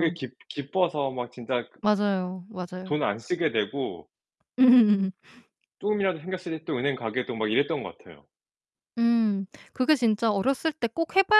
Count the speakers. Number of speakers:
2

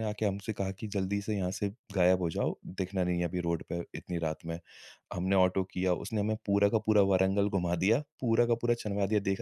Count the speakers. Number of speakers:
1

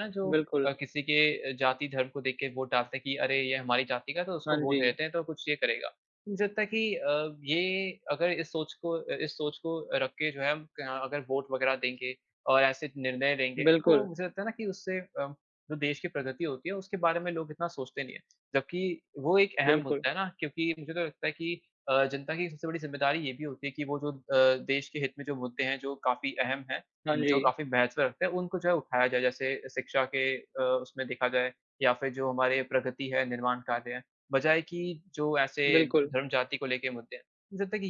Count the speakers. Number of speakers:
2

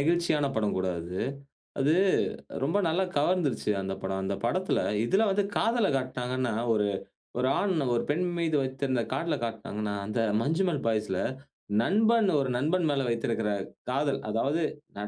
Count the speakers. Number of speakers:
1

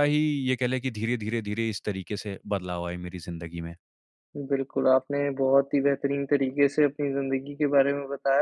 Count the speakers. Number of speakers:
2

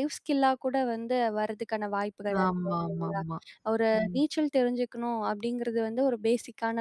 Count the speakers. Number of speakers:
2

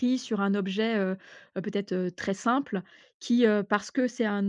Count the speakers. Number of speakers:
1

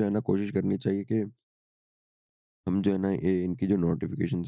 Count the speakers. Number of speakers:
1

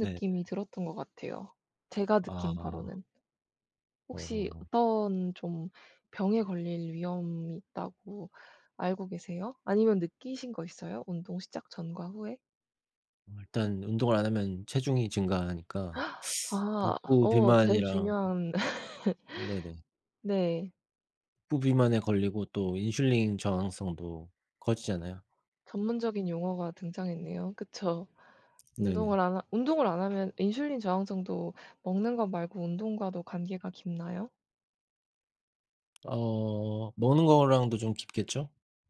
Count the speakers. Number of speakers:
2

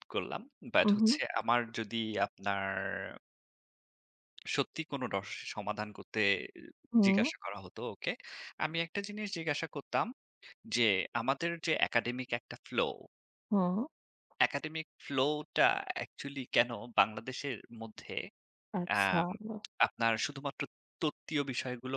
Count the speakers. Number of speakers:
2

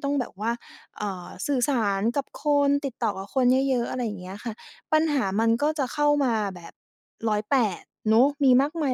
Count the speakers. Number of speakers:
1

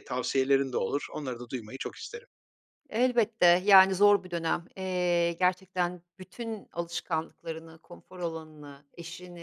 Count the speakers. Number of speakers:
2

